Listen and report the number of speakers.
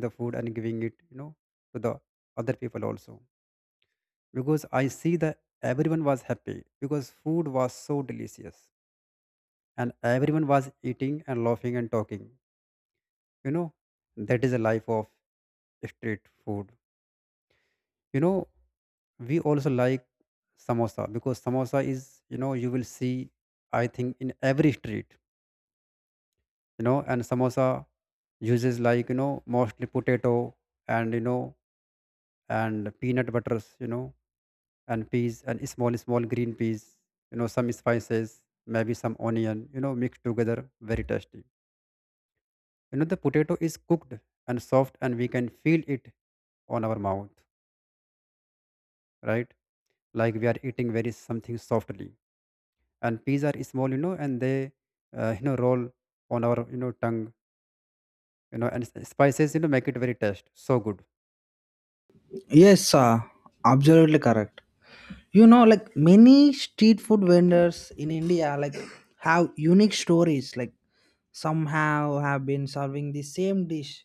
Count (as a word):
two